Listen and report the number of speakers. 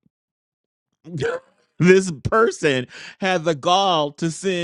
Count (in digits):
1